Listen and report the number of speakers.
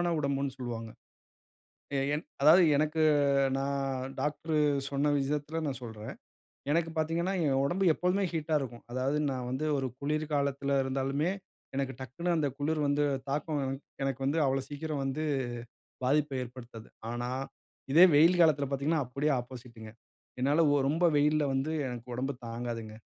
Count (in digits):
1